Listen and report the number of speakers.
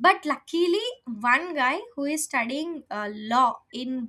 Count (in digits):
1